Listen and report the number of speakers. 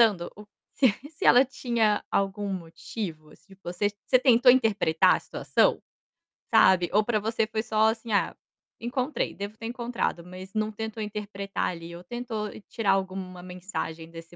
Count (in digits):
1